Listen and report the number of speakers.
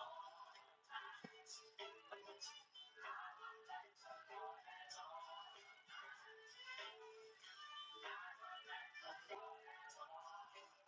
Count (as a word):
zero